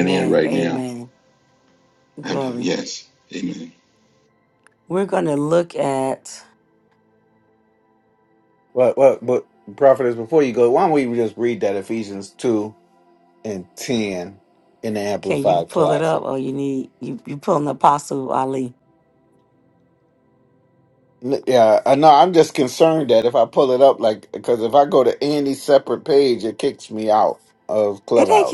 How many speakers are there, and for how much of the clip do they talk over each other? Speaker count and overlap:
3, about 8%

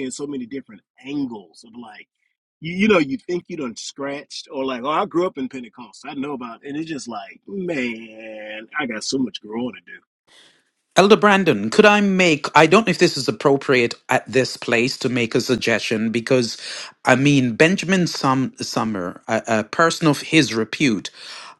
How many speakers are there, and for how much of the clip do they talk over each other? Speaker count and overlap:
2, no overlap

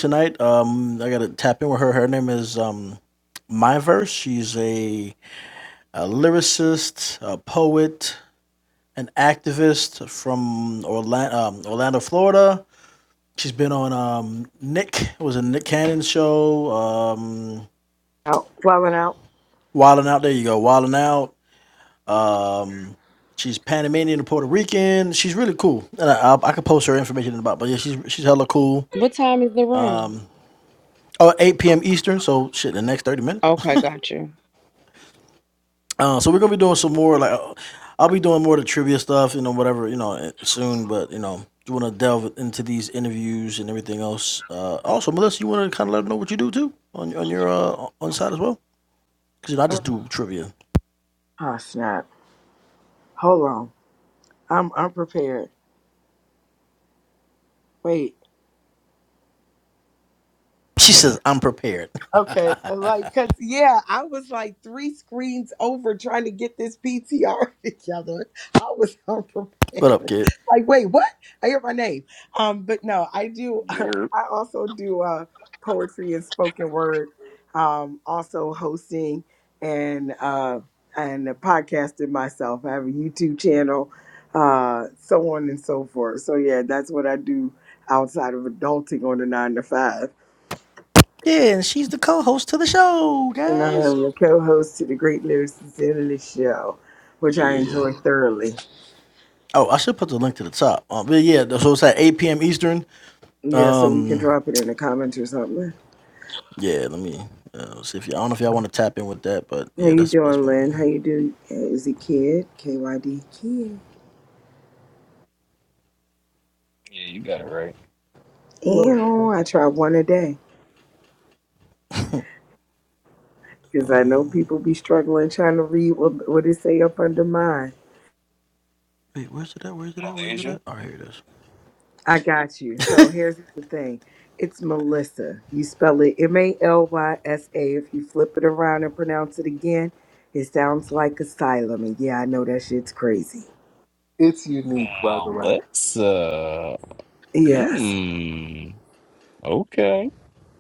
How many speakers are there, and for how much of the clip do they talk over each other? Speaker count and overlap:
5, about 3%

